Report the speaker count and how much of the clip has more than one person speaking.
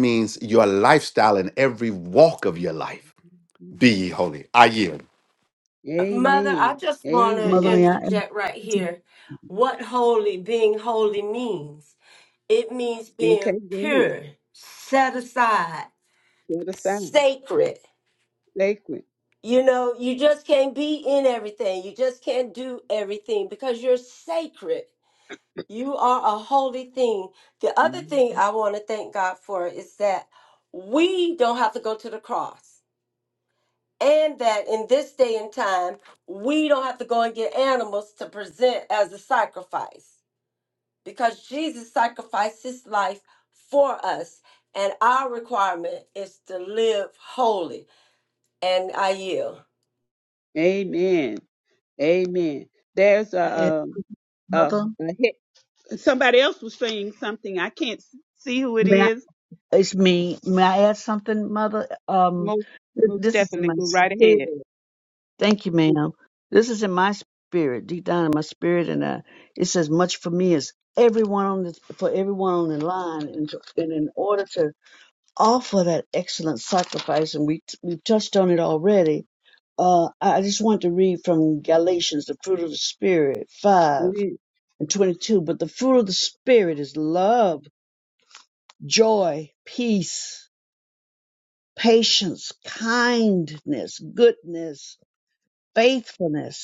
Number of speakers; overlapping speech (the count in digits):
4, about 6%